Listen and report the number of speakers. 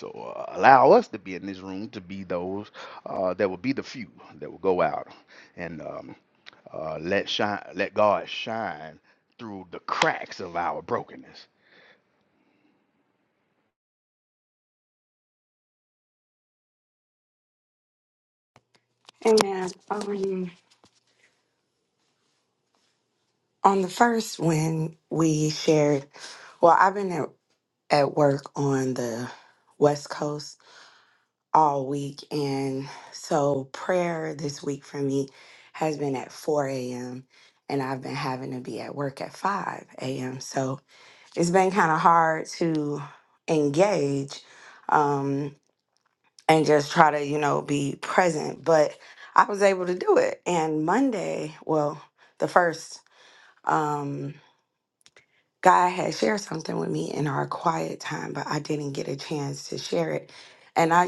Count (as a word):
two